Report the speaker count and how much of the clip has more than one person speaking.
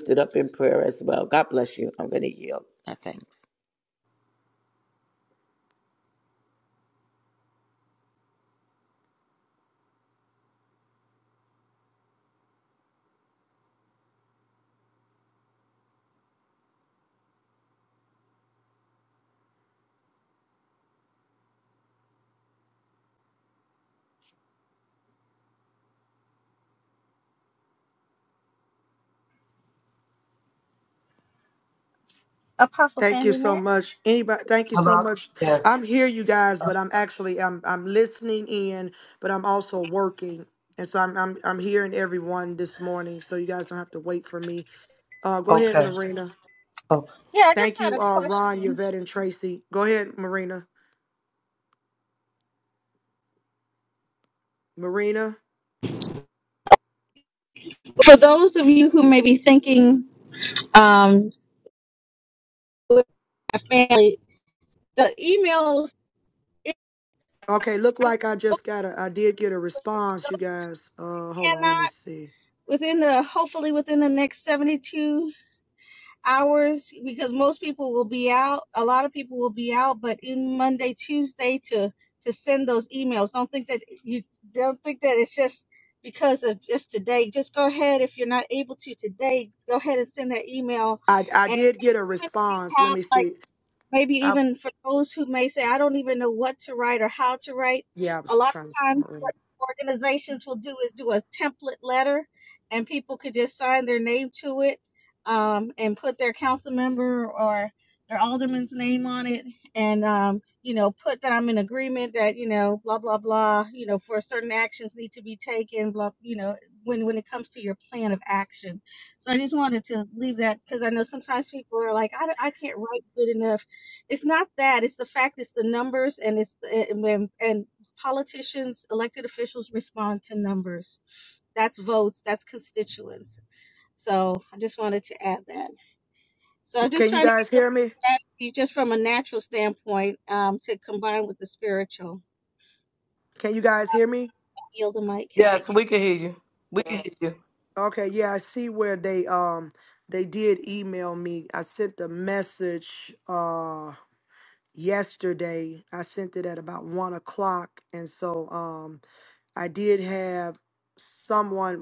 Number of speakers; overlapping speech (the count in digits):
4, about 3%